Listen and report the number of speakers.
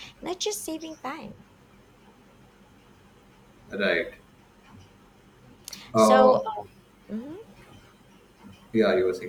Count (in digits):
2